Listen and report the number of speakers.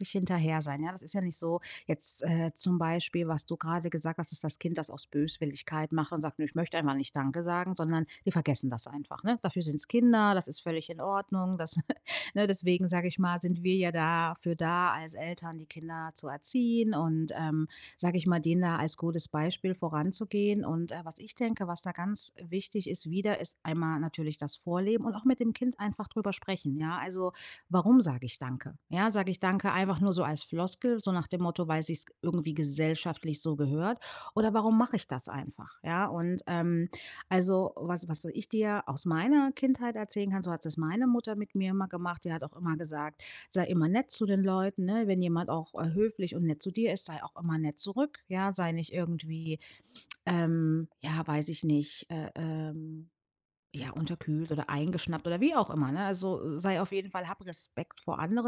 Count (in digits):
1